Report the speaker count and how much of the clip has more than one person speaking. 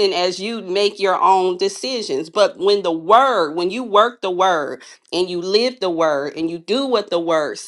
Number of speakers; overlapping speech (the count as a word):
one, no overlap